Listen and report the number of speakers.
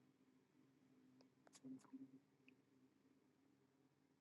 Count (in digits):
0